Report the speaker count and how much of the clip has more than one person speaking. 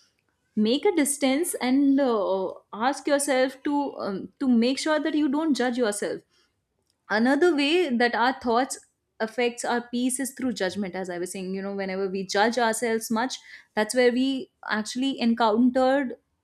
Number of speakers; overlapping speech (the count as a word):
one, no overlap